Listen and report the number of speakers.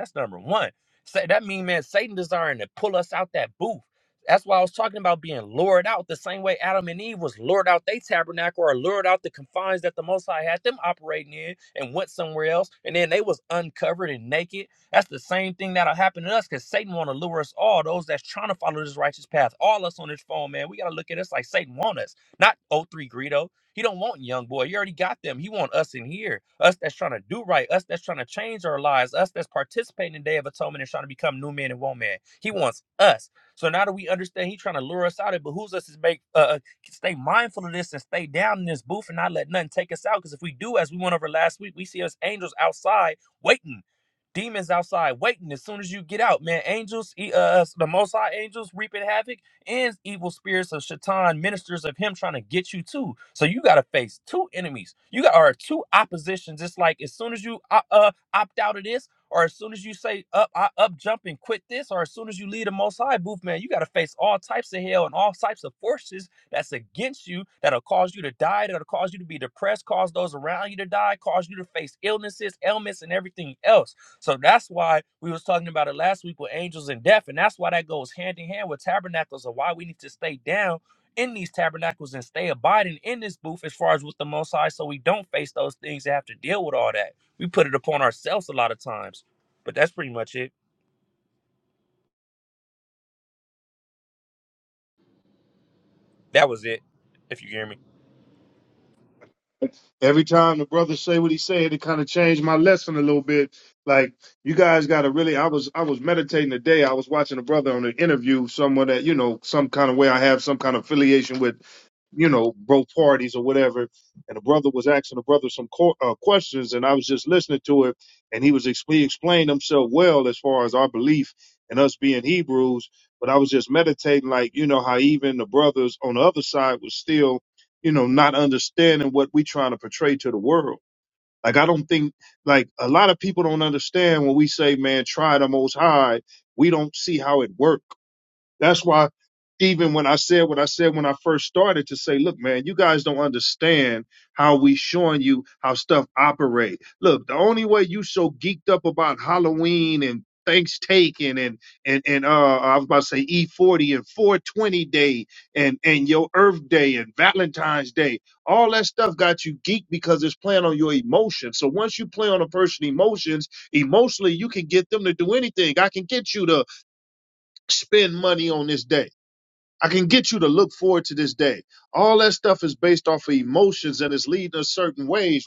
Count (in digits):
2